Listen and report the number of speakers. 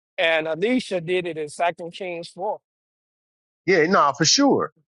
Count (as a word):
two